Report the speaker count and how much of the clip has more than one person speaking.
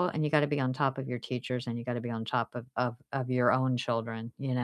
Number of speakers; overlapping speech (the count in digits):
1, no overlap